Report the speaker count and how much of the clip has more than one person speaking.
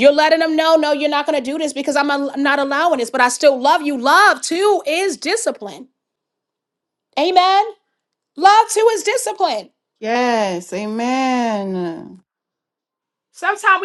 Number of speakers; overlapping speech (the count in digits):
2, no overlap